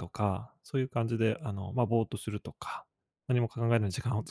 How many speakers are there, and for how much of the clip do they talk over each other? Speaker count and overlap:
one, no overlap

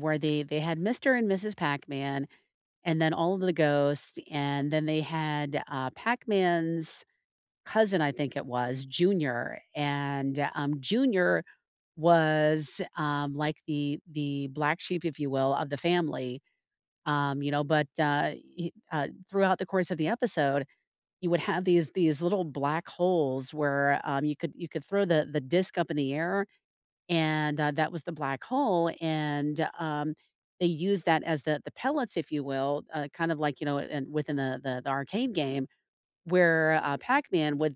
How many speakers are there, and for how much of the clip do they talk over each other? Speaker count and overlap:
one, no overlap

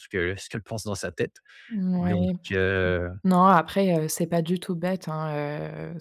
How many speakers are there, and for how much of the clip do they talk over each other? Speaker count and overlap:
two, about 6%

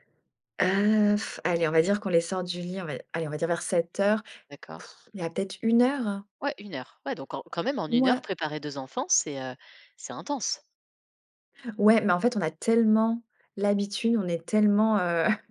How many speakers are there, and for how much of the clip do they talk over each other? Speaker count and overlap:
two, about 2%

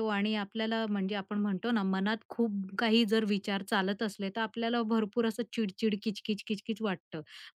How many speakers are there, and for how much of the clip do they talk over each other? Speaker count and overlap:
one, no overlap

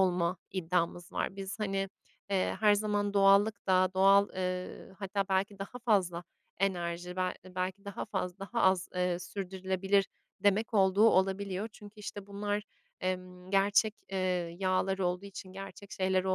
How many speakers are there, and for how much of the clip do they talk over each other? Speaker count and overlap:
one, no overlap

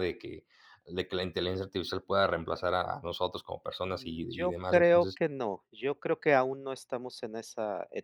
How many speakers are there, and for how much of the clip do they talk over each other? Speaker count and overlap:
two, about 14%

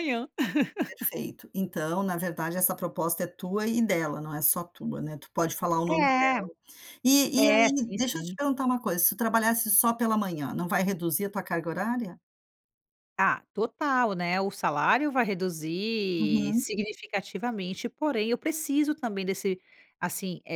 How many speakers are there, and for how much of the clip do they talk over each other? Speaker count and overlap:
two, about 8%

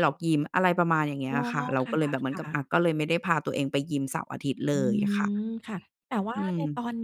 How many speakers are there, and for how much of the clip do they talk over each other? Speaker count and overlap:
two, about 14%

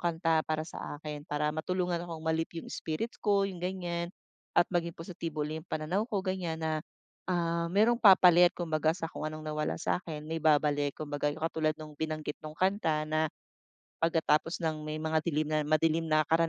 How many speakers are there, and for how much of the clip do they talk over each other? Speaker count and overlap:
one, no overlap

